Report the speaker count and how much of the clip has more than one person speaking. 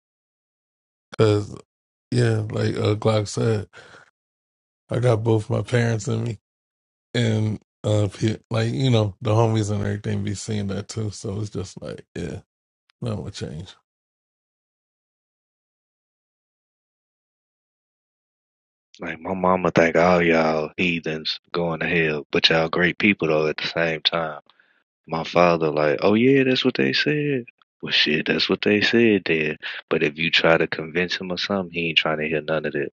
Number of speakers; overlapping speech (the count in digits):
2, no overlap